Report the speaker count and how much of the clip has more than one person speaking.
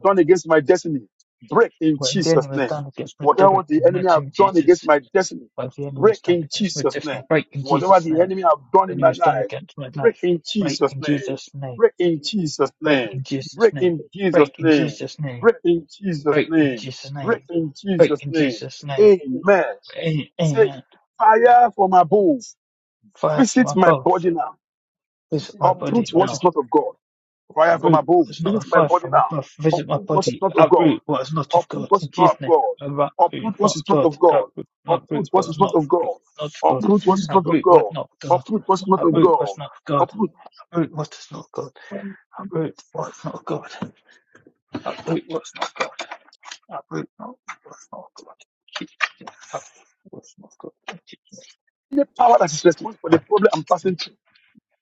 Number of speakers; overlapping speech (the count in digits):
2, about 33%